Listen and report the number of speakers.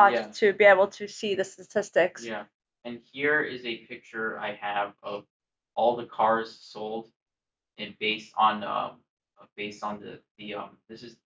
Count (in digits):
2